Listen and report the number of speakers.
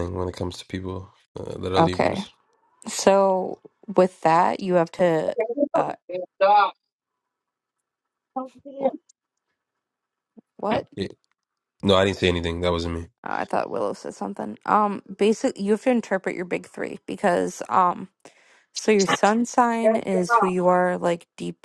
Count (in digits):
3